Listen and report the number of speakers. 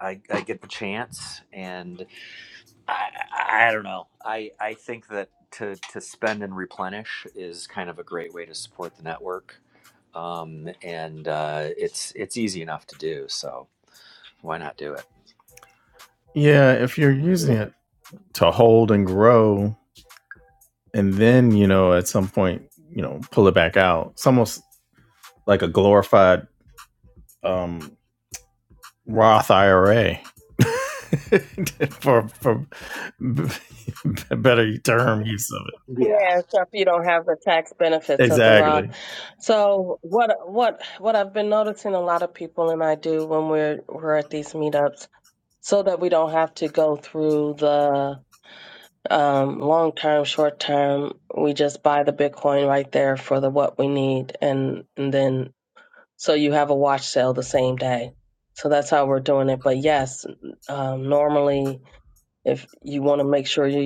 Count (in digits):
3